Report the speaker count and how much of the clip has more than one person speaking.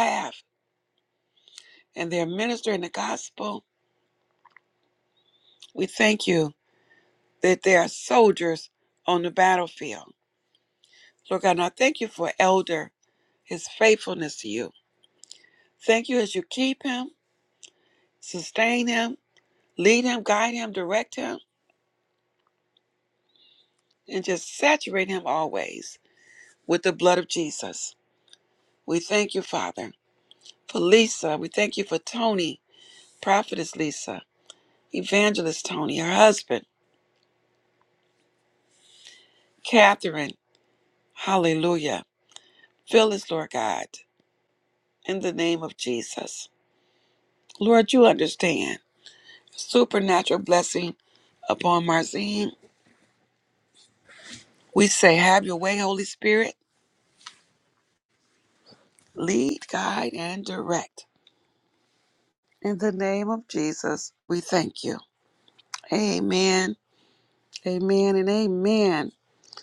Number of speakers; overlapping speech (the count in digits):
1, no overlap